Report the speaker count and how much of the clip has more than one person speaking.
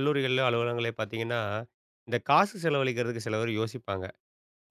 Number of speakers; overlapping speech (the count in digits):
1, no overlap